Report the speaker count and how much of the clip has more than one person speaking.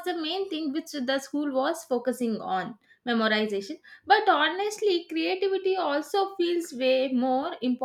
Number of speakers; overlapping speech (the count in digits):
1, no overlap